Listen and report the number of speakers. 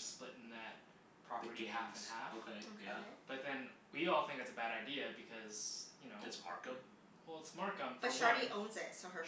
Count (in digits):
3